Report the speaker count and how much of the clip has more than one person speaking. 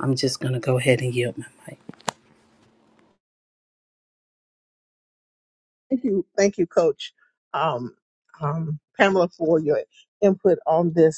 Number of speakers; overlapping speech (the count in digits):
2, no overlap